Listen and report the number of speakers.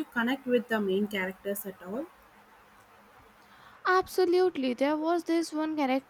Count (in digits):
2